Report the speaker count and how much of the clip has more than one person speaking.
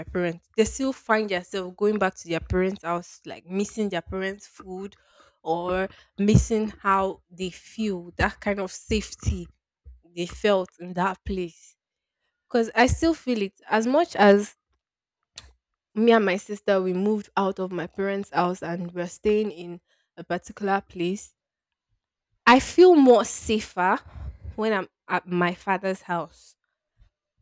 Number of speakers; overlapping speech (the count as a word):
one, no overlap